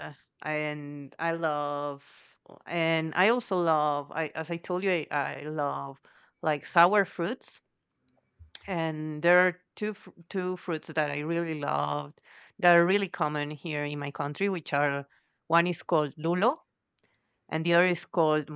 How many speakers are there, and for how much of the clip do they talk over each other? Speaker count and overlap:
one, no overlap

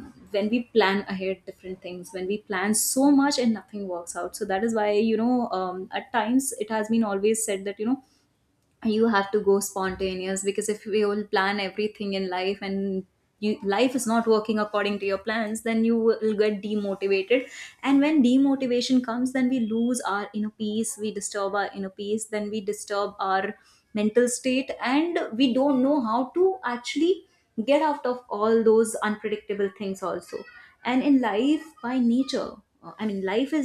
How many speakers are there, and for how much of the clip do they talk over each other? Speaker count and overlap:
one, no overlap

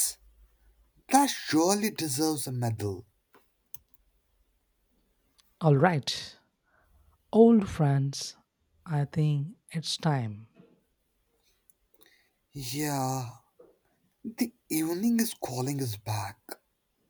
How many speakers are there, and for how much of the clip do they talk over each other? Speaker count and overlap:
two, no overlap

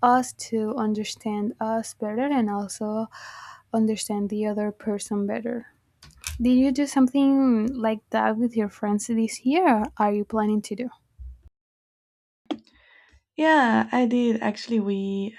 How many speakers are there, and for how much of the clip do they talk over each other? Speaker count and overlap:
two, no overlap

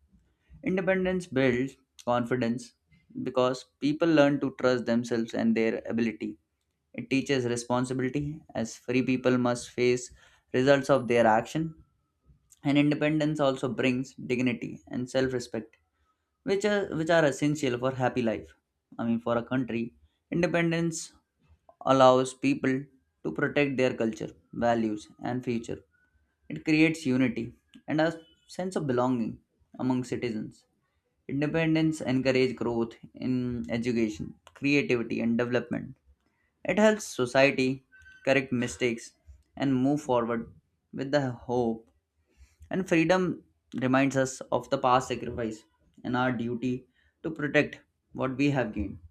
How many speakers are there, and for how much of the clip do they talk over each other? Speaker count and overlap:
one, no overlap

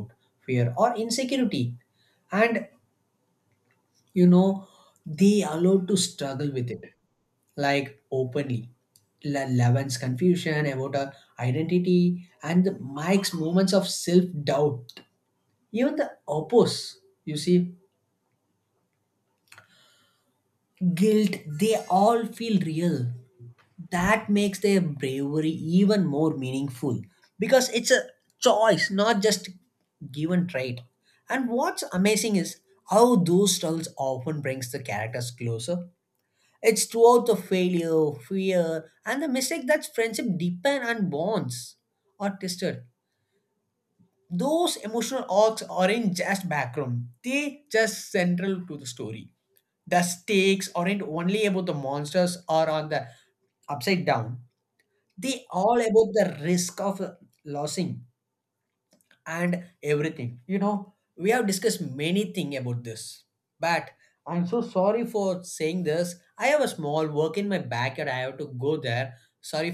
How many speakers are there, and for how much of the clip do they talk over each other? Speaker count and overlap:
one, no overlap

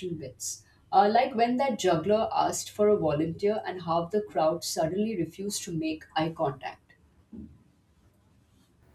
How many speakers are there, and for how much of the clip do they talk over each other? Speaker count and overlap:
one, no overlap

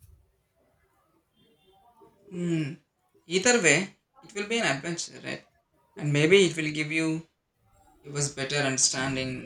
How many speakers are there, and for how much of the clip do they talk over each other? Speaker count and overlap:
one, no overlap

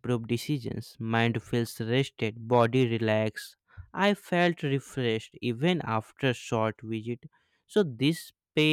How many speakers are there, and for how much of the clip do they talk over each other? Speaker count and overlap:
one, no overlap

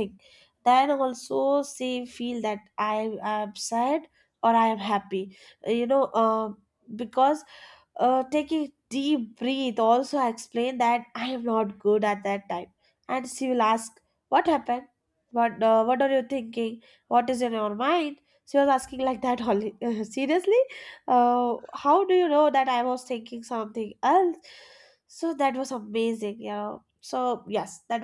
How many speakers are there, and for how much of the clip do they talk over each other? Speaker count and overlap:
one, no overlap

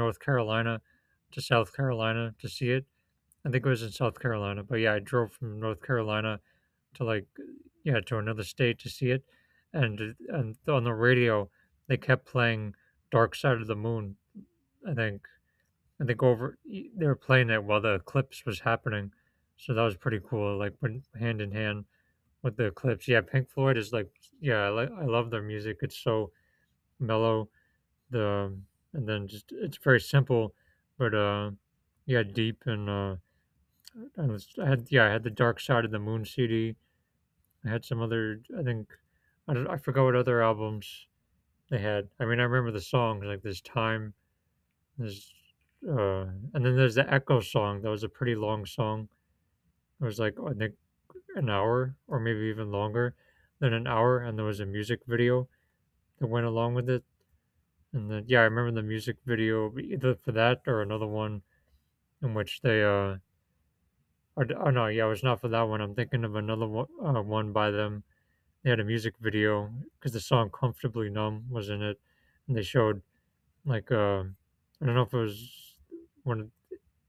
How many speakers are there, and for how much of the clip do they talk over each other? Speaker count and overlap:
one, no overlap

